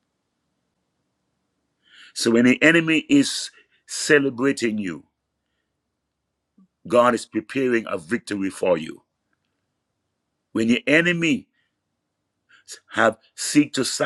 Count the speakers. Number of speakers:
1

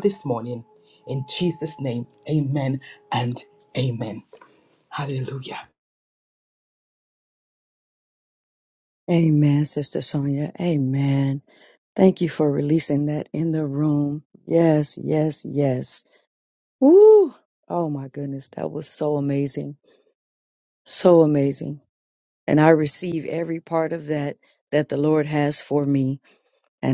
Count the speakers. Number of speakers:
2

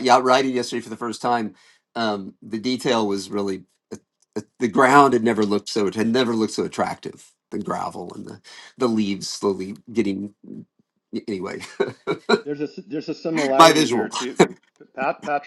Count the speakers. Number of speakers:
2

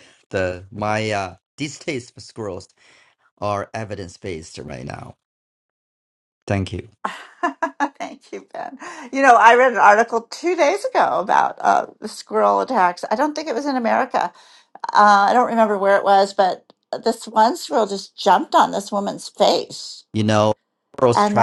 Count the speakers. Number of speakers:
2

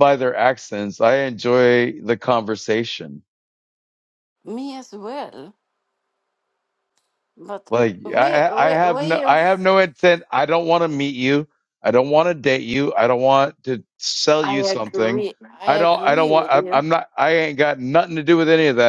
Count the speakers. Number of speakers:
2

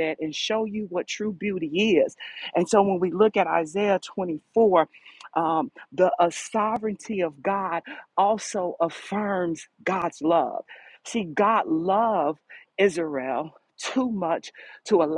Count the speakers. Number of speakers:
1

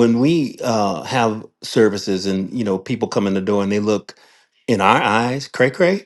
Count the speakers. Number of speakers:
1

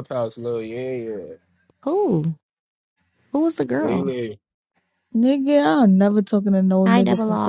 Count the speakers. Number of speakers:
3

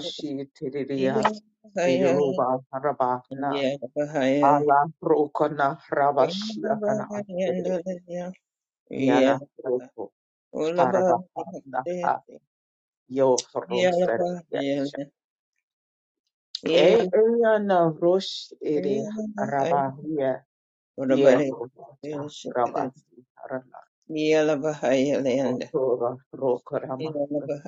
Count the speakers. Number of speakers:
2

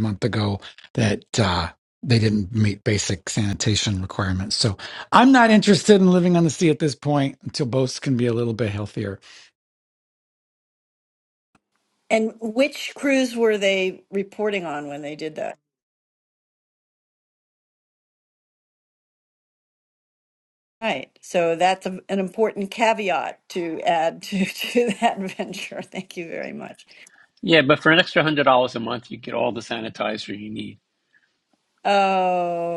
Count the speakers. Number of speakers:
3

